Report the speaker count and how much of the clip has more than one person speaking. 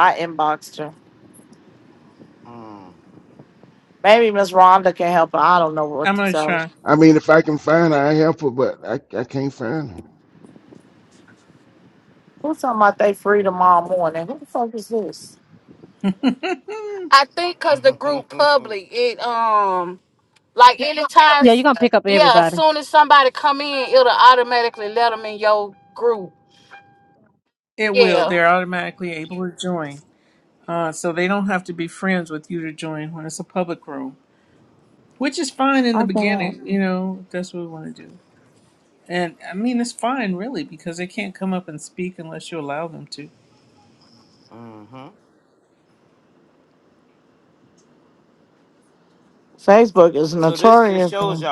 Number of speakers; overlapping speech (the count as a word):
six, about 7%